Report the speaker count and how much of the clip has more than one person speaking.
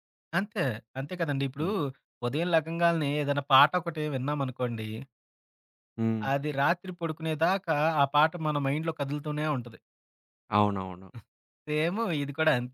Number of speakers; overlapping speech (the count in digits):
2, about 1%